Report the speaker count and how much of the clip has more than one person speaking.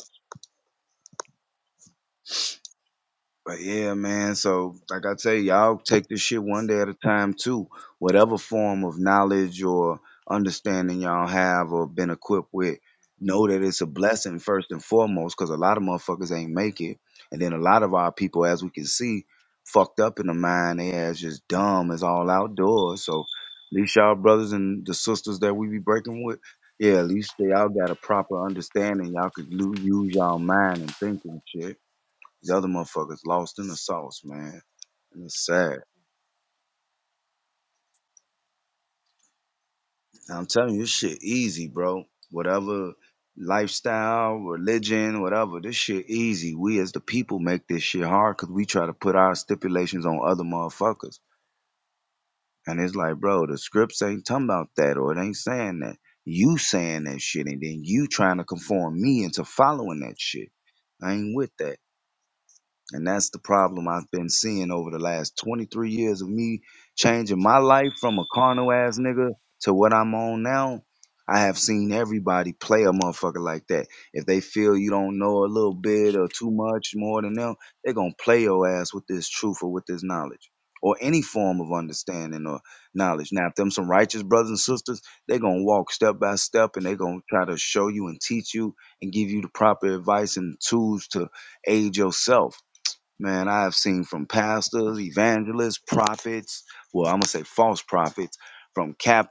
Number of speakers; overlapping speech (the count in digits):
1, no overlap